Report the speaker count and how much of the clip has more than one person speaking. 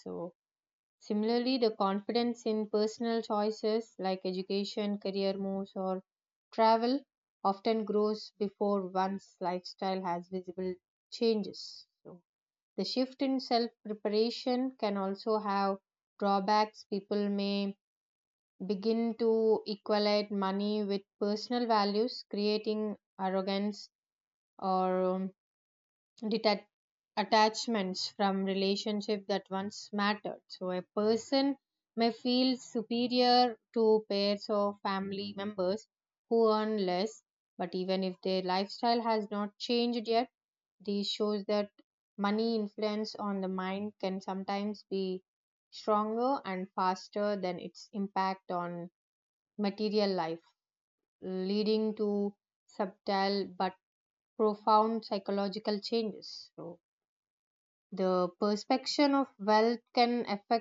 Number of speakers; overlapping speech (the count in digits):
1, no overlap